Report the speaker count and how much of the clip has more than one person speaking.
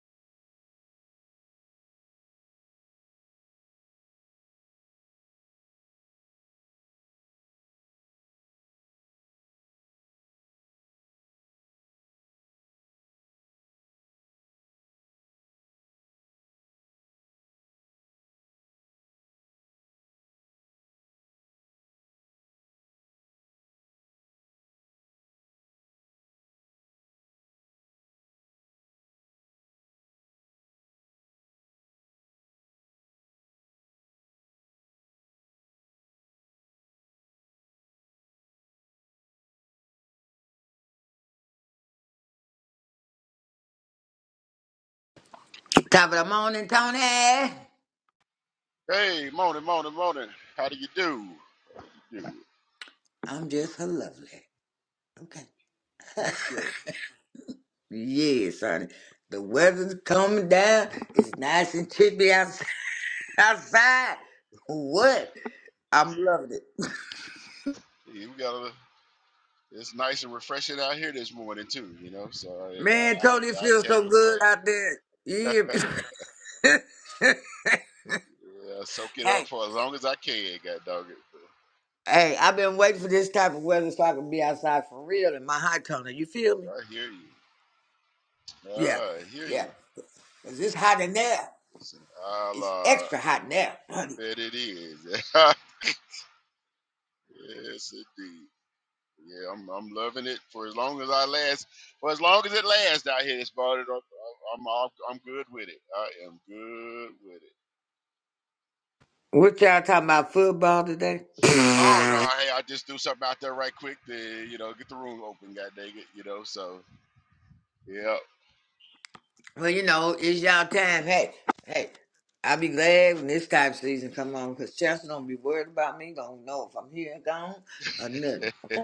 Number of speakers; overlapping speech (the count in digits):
2, about 3%